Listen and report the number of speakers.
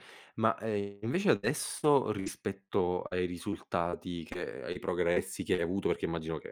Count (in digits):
1